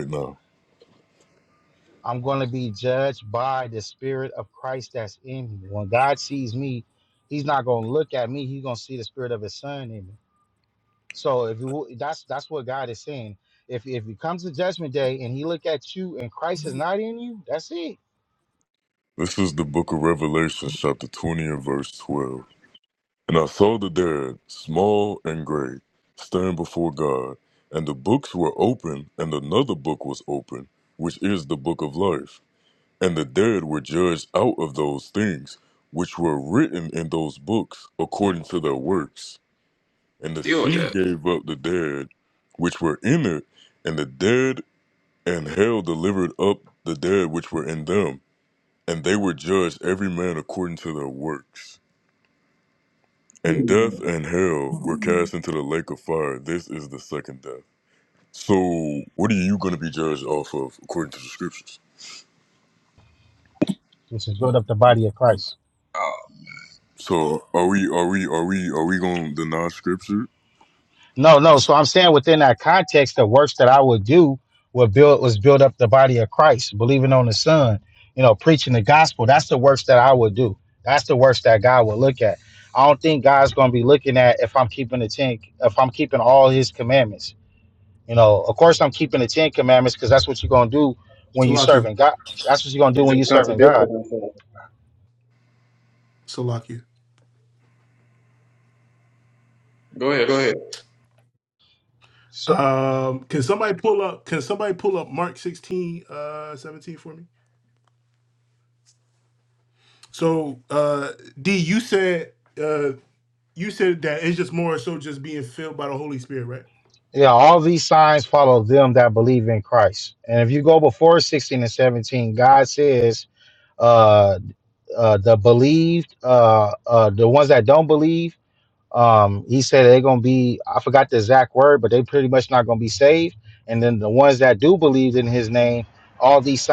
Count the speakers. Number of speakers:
4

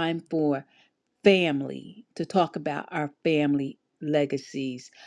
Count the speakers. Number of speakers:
1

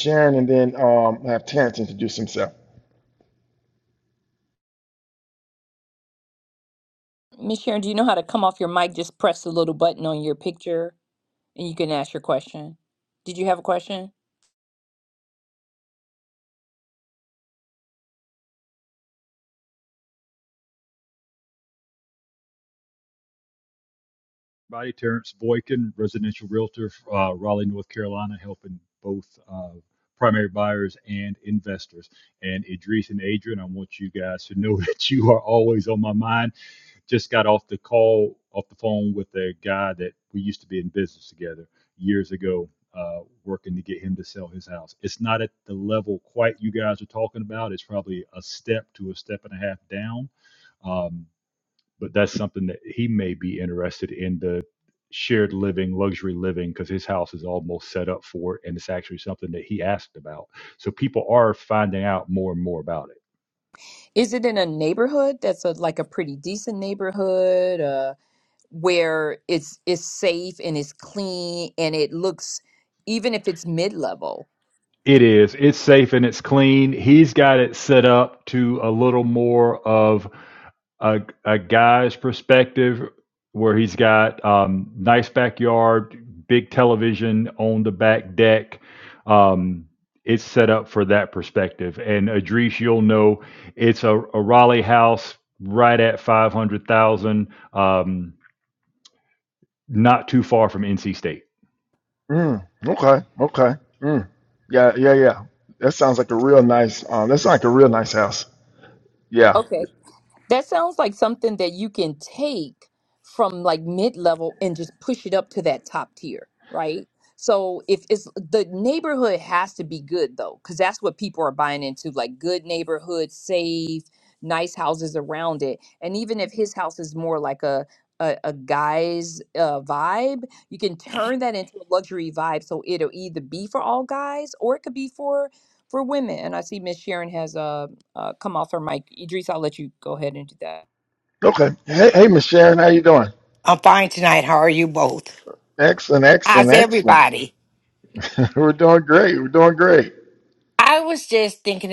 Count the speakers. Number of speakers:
4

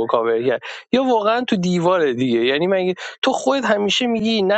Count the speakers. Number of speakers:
1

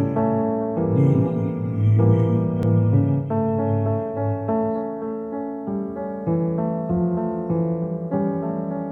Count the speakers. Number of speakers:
0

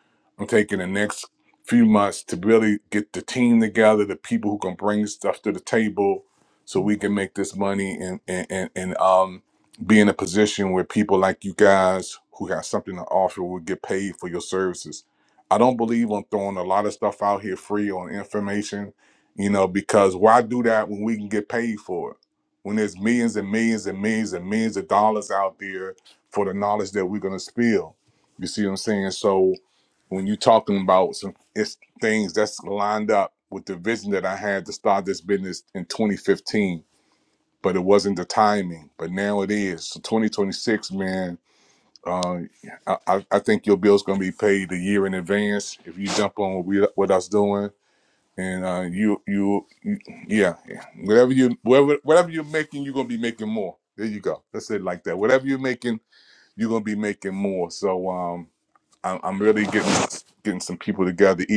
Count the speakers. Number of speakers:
1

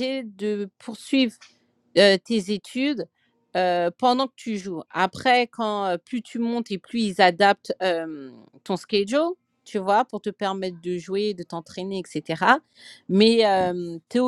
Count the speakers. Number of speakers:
1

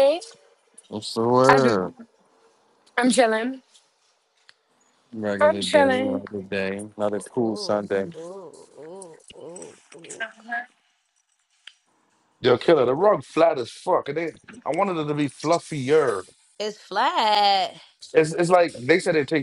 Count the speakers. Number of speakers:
4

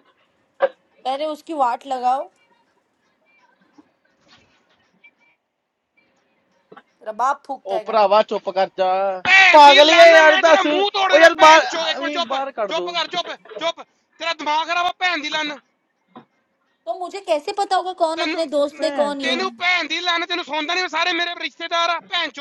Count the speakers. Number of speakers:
3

